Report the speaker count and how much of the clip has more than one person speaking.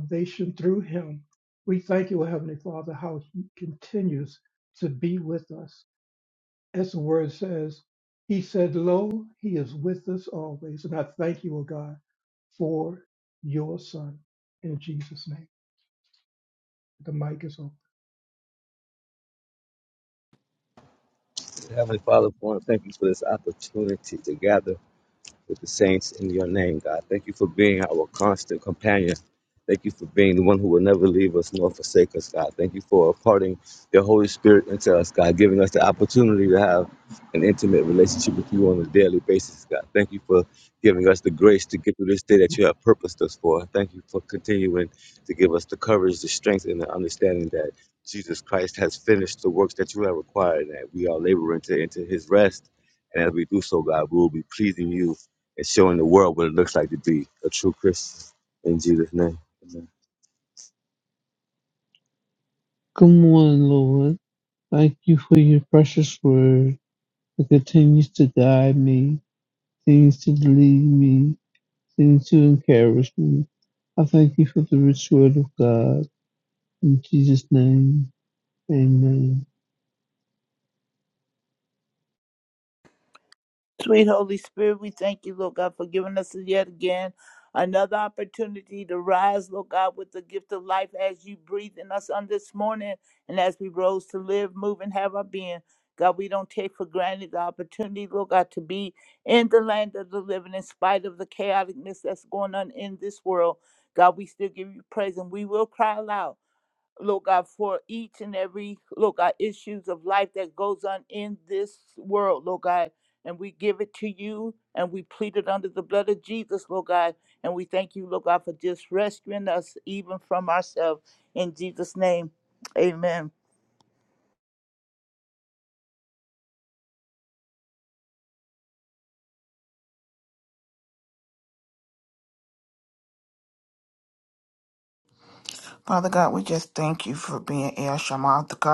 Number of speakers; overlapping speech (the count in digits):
5, no overlap